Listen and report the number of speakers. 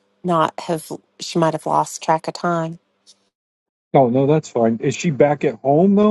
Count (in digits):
2